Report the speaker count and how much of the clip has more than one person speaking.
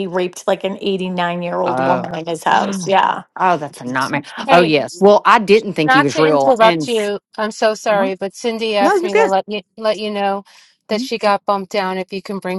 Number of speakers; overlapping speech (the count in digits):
3, about 23%